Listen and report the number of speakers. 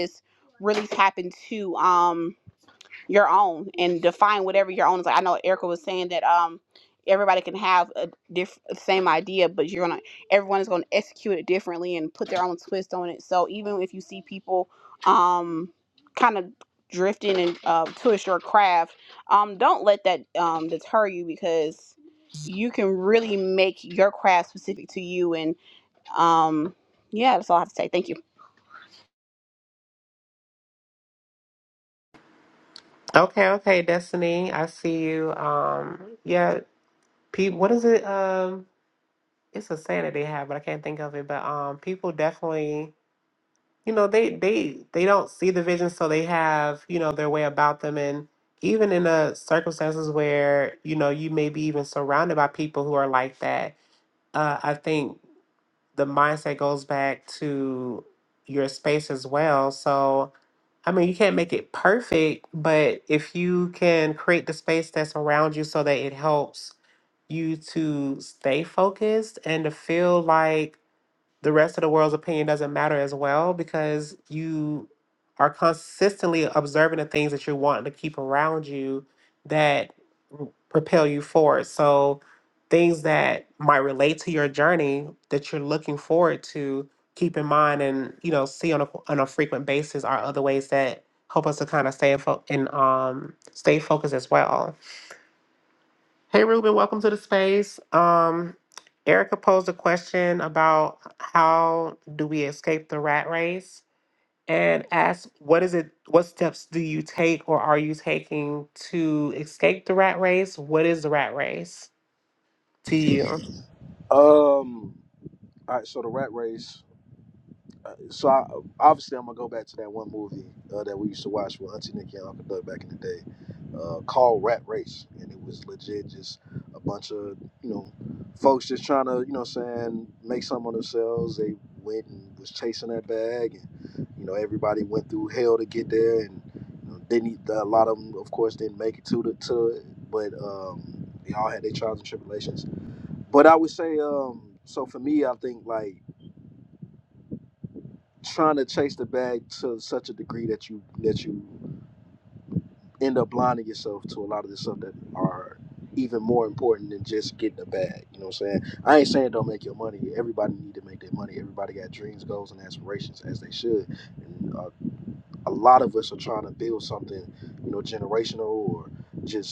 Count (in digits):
3